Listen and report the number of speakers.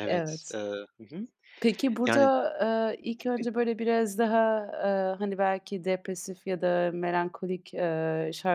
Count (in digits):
2